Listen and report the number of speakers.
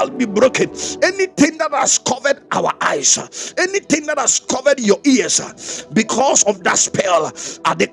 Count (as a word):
one